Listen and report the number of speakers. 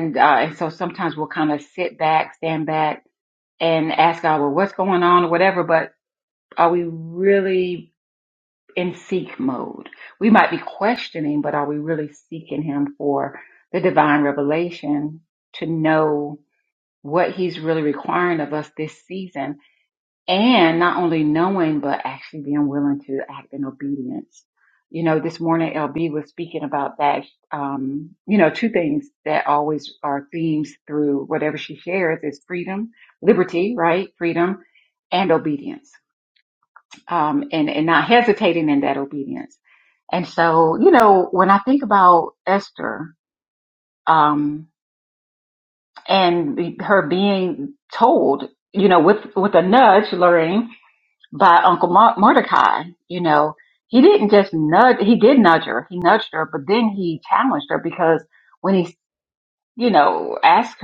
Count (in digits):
1